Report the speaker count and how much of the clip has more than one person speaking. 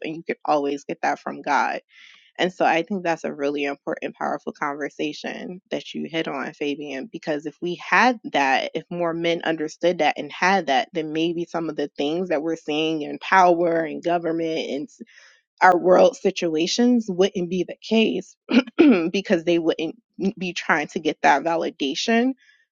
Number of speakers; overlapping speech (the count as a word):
one, no overlap